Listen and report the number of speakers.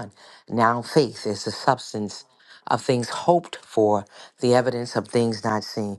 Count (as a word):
one